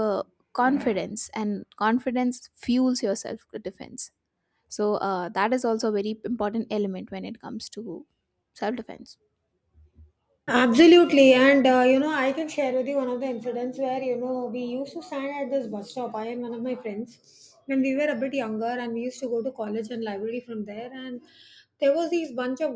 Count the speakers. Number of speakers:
two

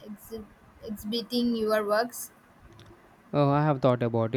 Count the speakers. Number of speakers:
two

